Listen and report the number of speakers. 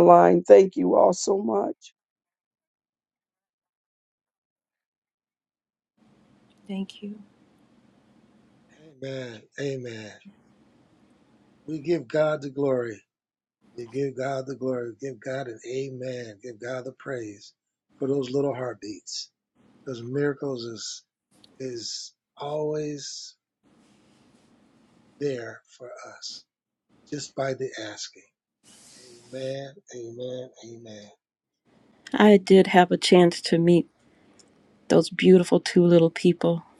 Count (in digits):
3